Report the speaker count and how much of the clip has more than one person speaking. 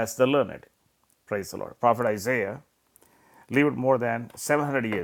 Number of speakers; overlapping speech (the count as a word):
one, no overlap